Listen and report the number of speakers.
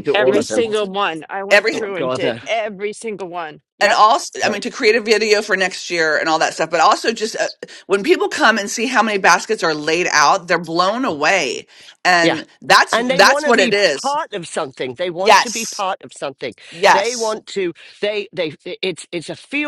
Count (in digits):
3